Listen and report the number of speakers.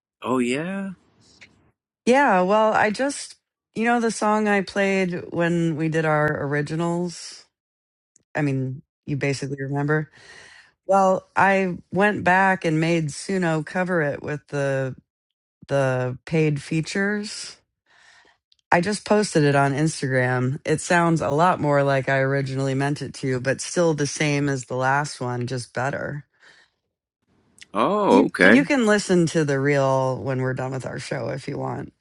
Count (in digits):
2